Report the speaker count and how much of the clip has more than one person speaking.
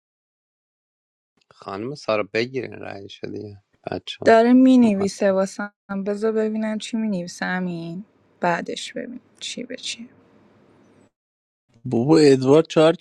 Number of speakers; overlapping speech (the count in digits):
3, about 4%